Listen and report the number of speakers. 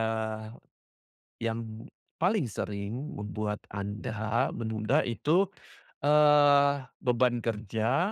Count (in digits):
1